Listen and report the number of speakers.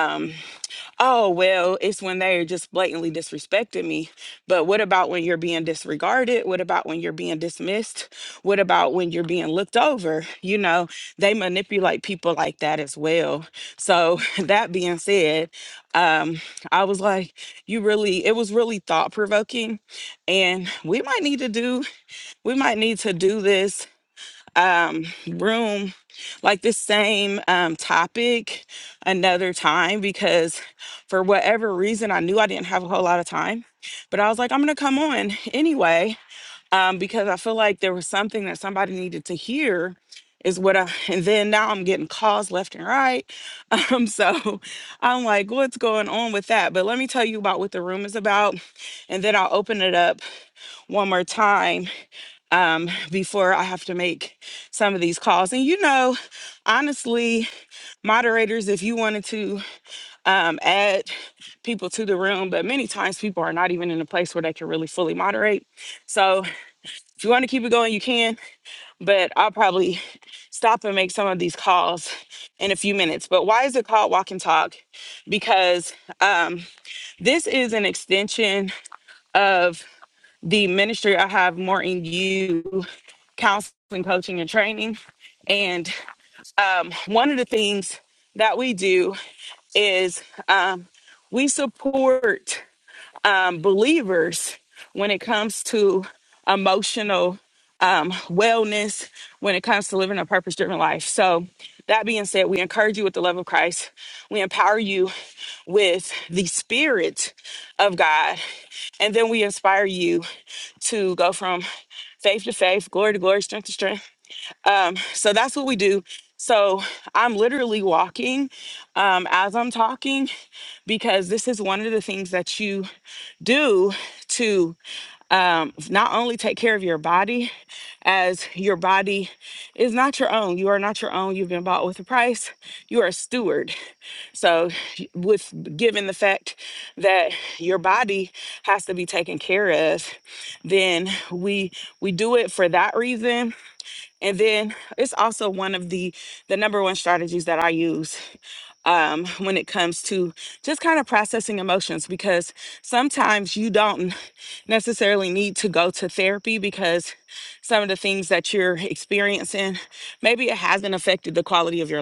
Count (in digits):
1